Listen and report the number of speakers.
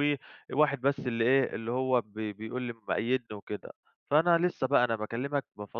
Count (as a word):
one